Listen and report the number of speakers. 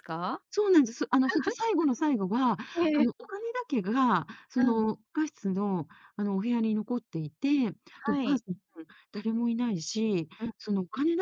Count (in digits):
2